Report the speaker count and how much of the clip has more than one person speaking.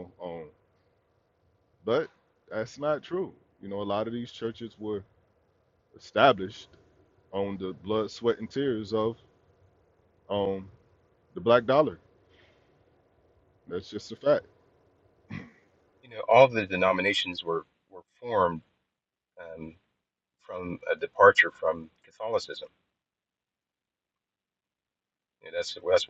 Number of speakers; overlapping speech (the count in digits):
2, no overlap